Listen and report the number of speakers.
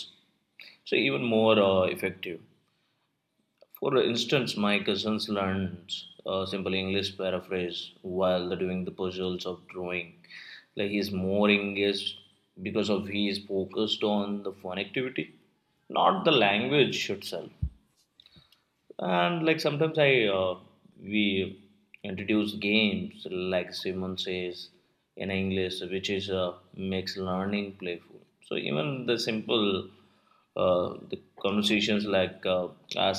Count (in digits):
1